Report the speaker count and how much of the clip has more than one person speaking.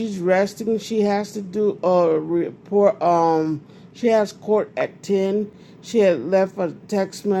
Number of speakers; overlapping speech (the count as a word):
one, no overlap